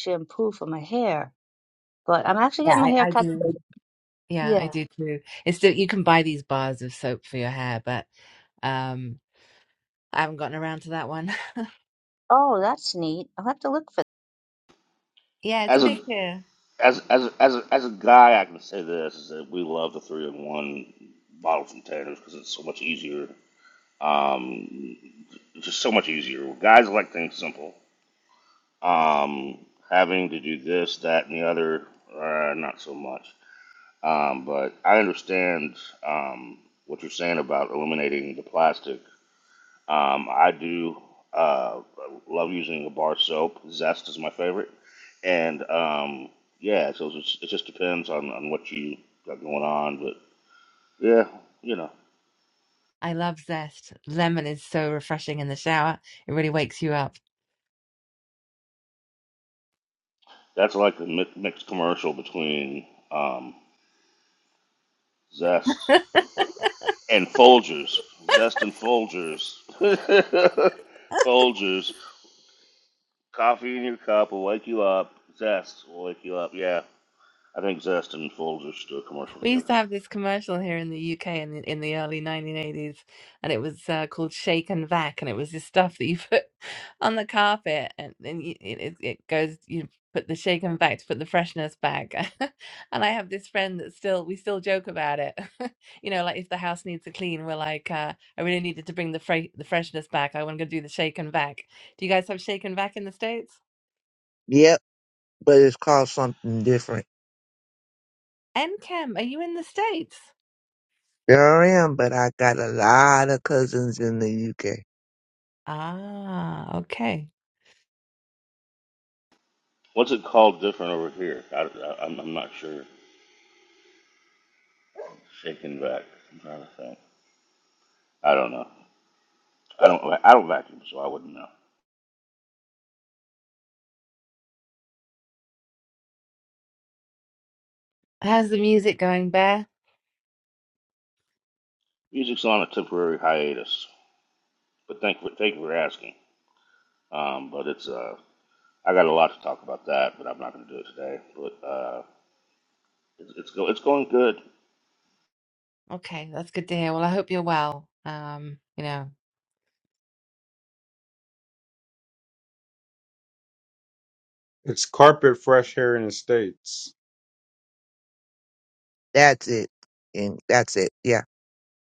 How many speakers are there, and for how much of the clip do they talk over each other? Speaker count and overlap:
five, about 1%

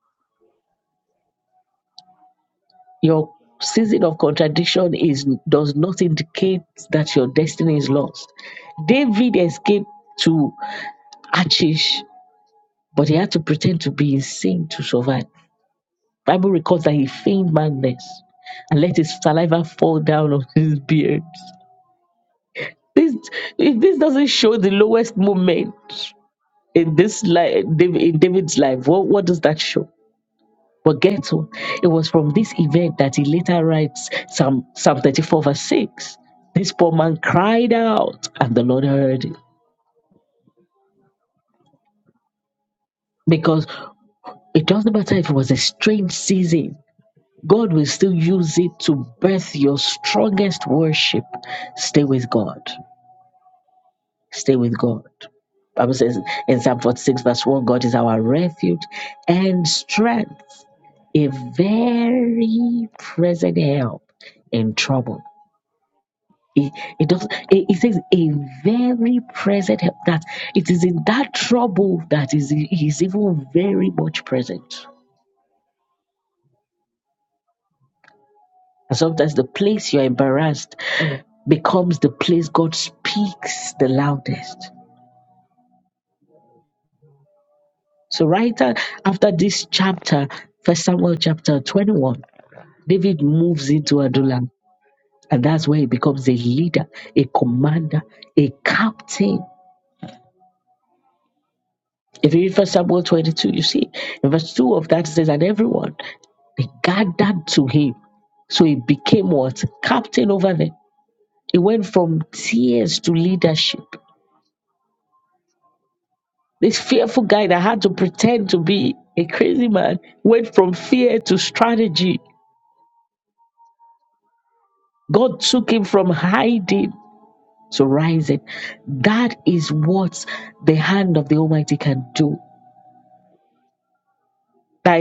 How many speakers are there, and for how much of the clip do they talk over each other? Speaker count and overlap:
one, no overlap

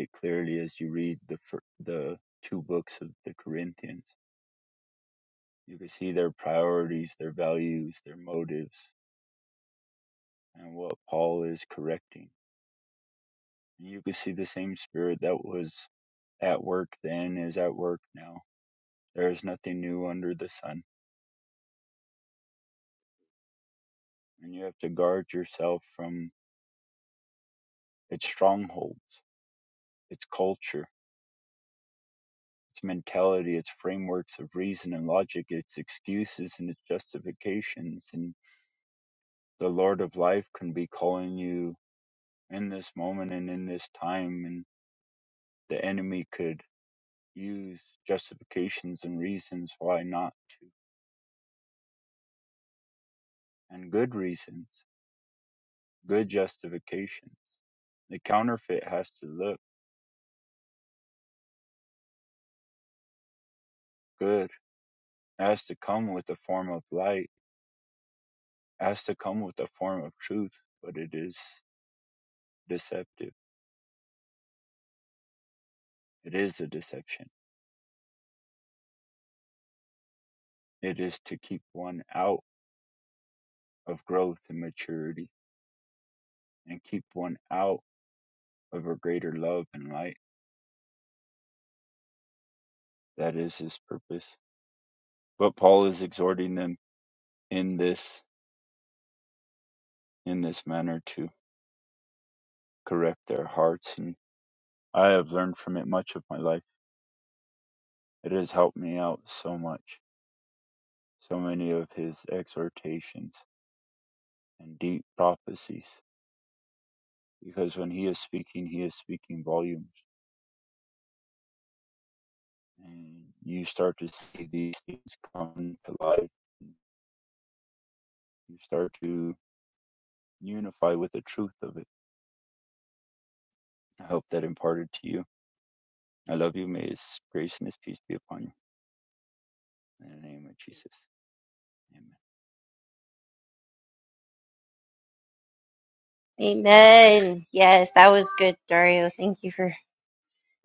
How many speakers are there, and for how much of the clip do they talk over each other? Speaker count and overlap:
two, no overlap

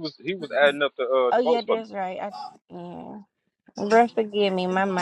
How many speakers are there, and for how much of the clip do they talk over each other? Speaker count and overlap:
two, about 10%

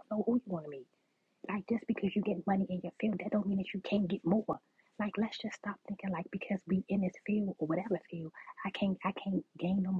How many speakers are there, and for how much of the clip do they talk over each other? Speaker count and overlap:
one, no overlap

